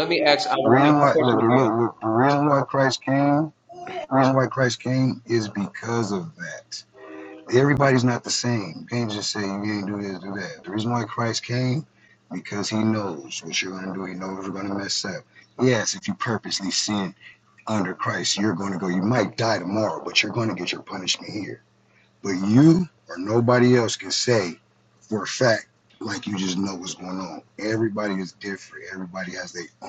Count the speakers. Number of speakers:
2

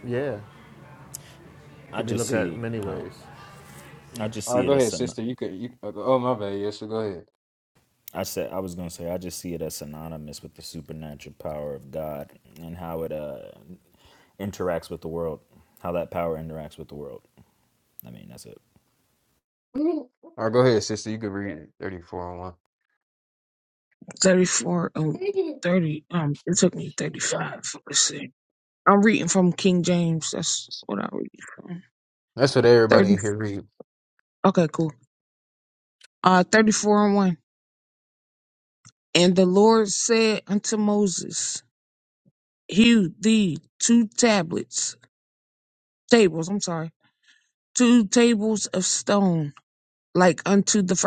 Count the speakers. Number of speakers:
4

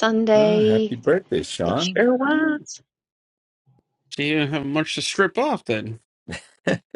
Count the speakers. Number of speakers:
3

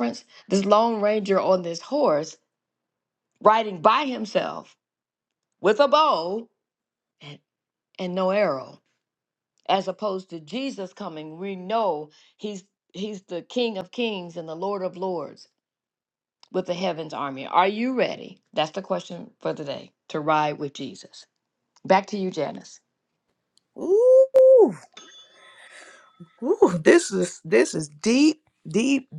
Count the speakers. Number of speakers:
2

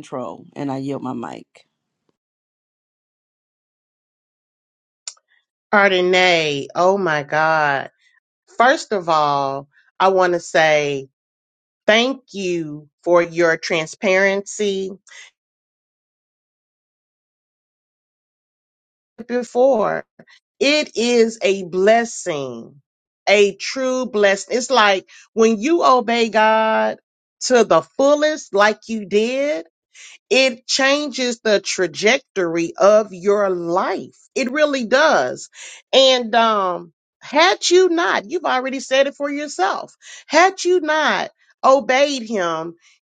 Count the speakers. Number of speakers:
2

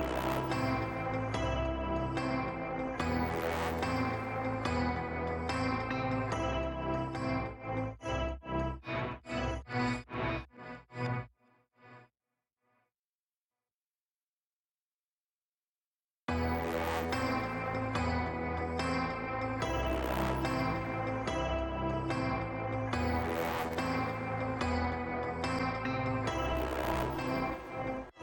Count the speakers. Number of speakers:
0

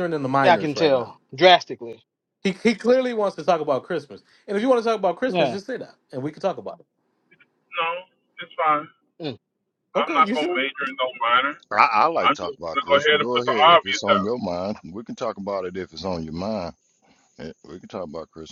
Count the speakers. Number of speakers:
4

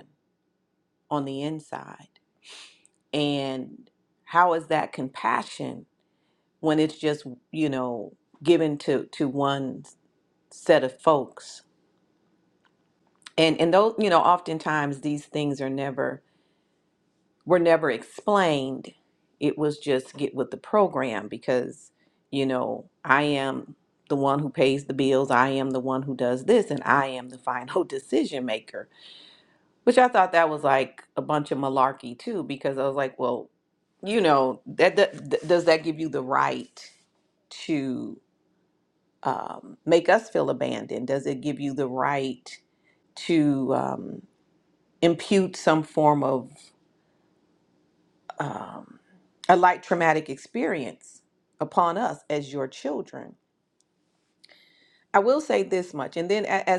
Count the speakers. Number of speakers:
1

